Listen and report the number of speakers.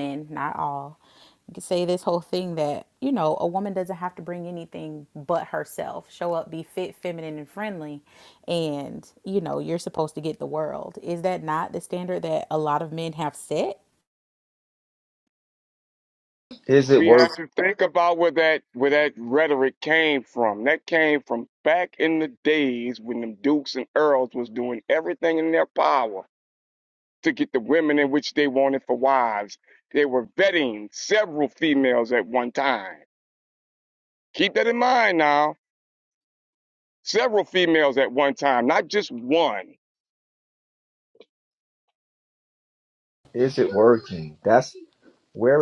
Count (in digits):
3